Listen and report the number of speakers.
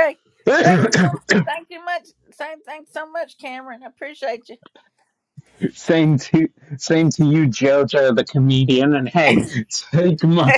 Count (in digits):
2